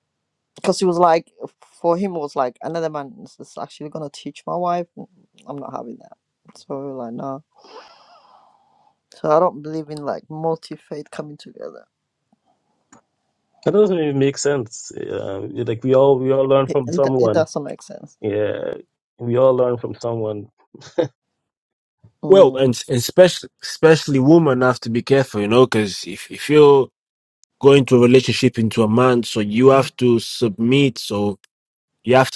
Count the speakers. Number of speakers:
3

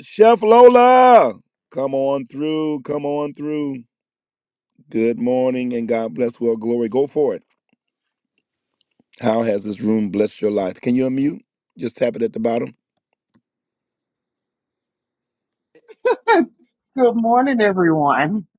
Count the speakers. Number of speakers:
2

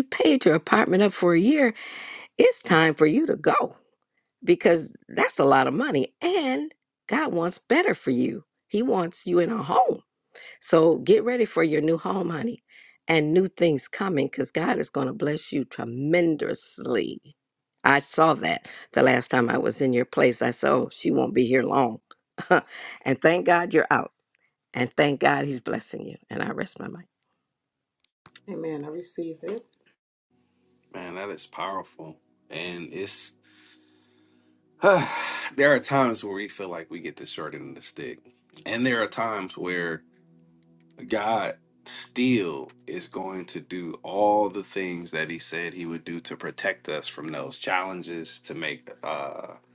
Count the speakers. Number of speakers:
3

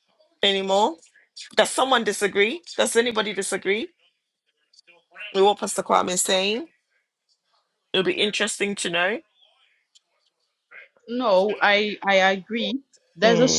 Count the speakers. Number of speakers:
2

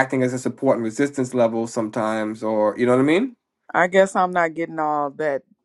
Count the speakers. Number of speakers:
2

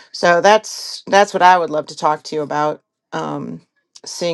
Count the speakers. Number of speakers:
1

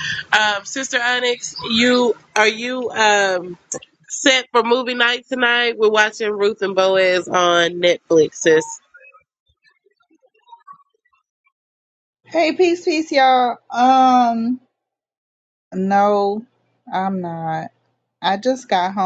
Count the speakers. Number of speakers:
2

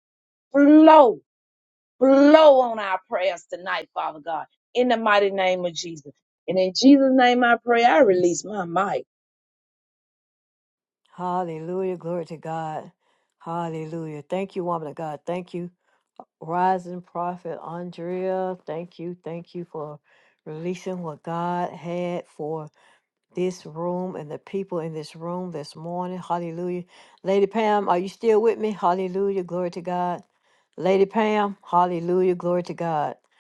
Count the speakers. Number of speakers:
2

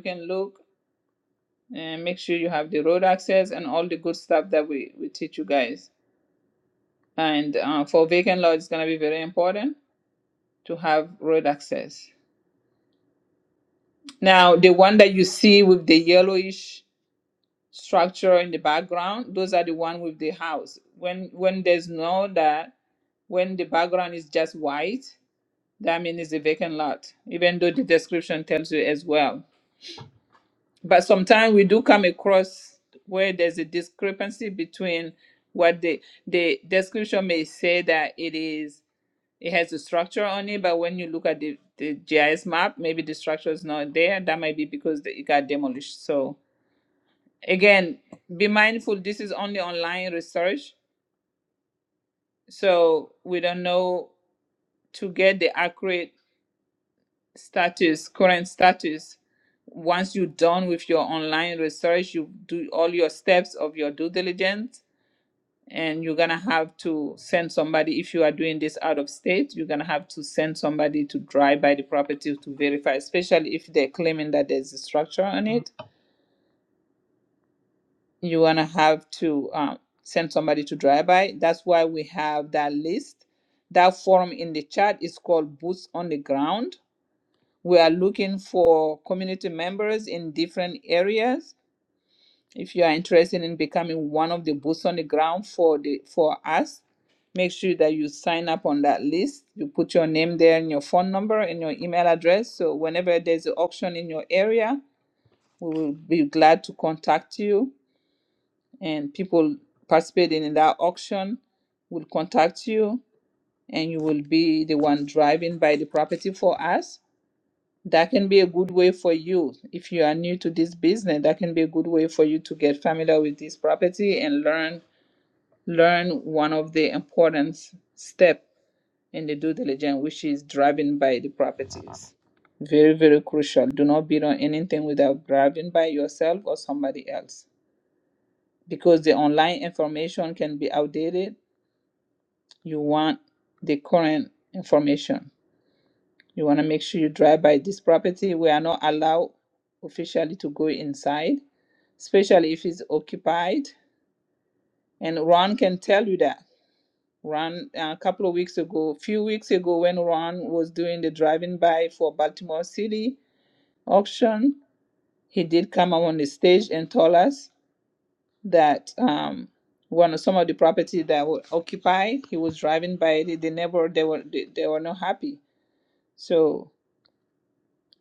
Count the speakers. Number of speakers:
1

